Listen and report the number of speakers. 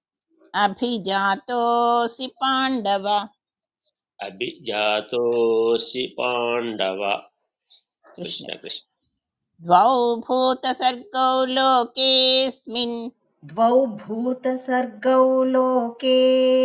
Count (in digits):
3